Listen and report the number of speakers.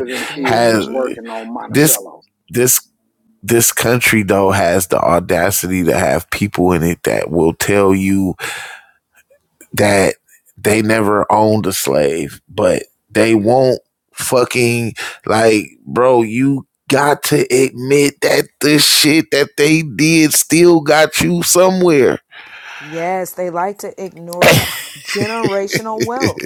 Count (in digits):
3